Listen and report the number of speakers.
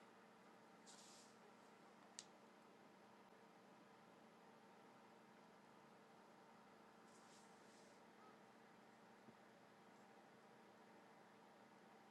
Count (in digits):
0